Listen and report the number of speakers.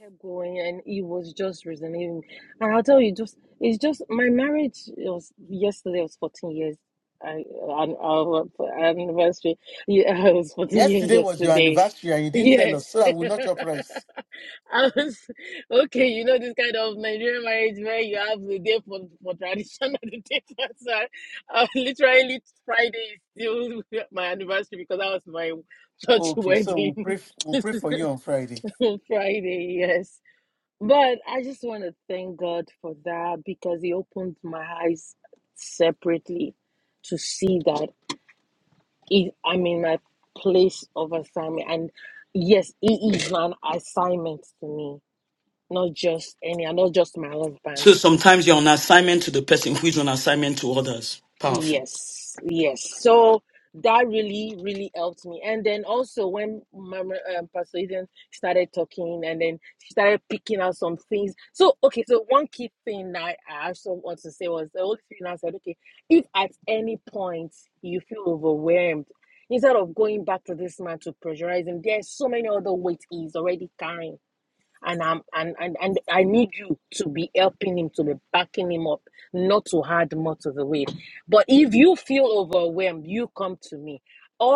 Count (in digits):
3